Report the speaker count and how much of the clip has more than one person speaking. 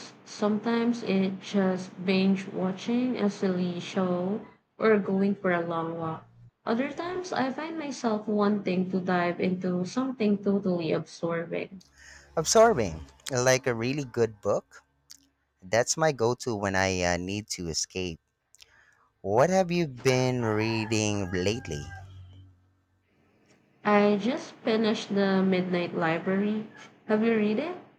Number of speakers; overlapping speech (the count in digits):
2, no overlap